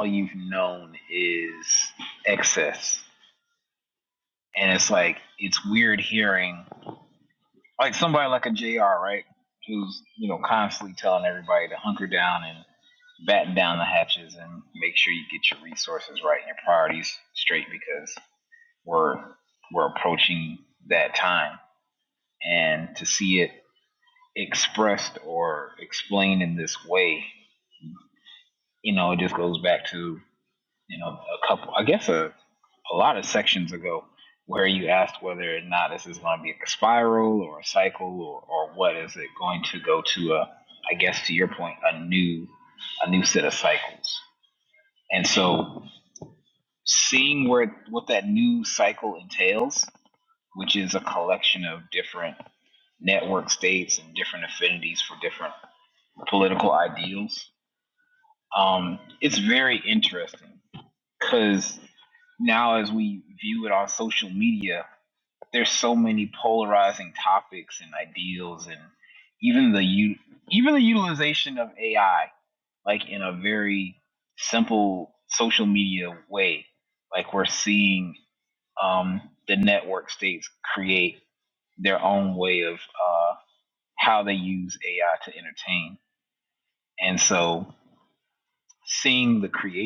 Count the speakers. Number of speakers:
1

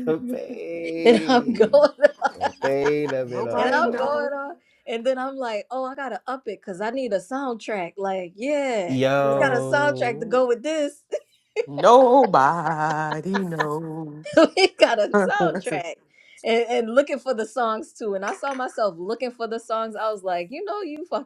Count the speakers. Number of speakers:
3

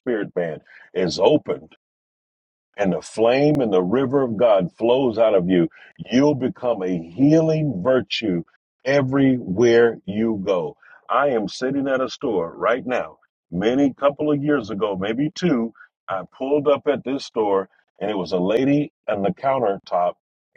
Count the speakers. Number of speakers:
1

